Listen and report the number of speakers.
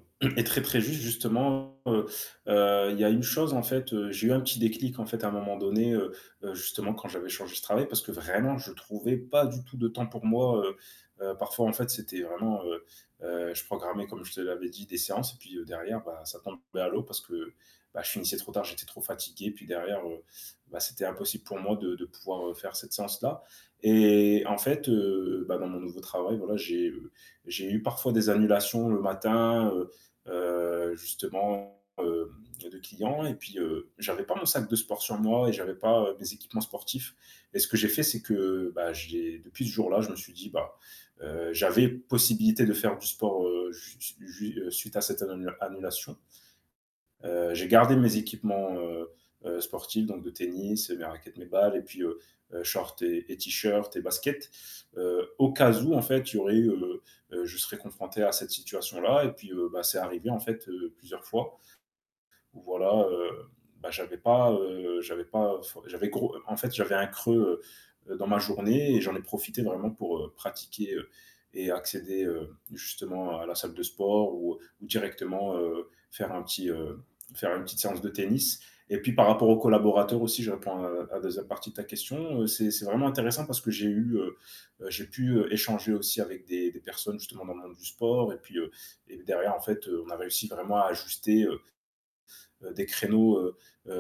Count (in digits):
1